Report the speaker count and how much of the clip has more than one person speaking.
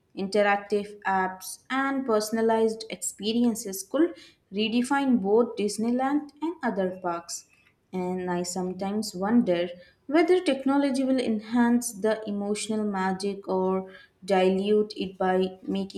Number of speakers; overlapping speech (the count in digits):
1, no overlap